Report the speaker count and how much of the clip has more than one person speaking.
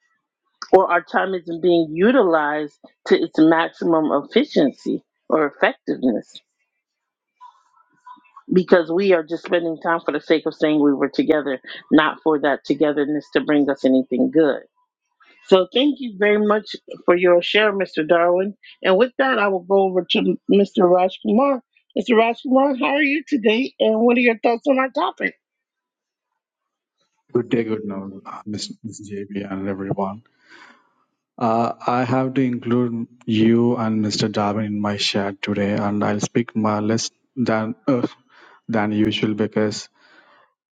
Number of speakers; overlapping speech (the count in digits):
2, no overlap